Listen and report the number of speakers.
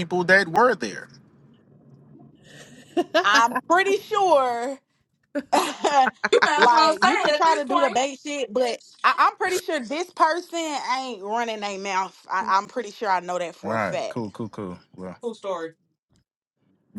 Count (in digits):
3